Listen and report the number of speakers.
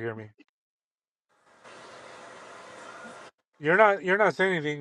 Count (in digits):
1